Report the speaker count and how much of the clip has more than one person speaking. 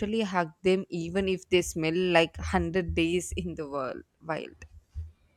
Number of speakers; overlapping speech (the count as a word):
one, no overlap